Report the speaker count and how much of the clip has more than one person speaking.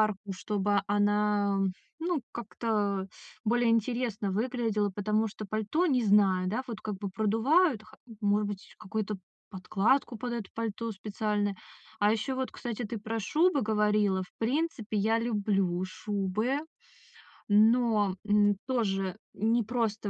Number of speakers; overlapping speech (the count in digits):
1, no overlap